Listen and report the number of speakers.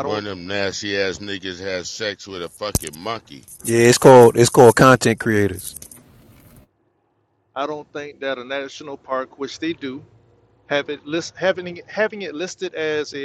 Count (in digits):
3